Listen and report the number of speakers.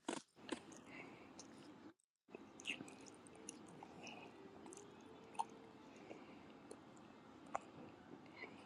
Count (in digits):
0